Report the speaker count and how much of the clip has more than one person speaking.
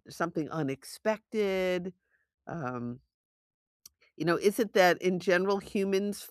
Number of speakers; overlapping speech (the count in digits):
1, no overlap